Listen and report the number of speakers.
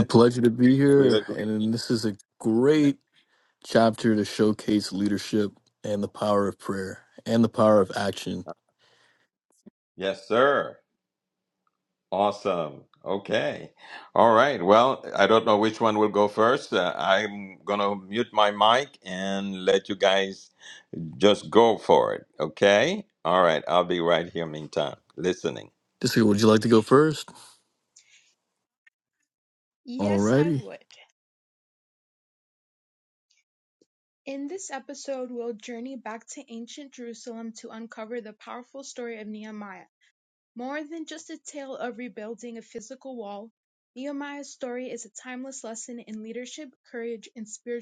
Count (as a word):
three